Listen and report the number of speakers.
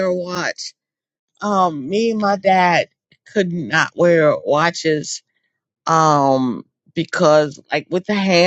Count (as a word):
one